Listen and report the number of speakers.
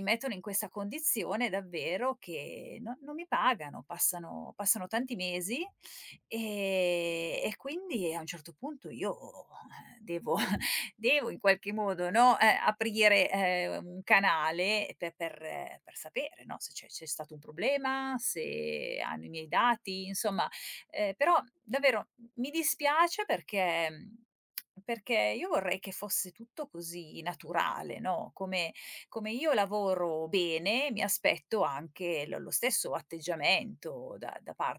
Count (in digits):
1